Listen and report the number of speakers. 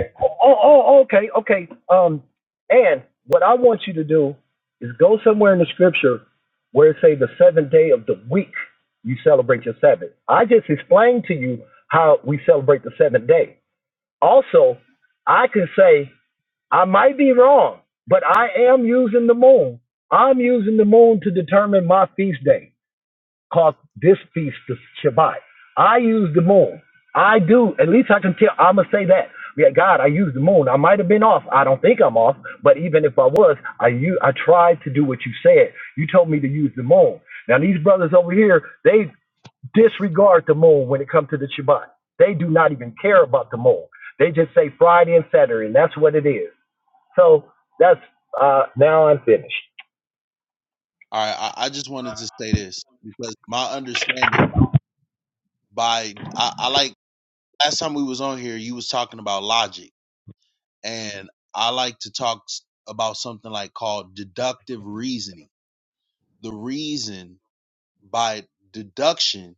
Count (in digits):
2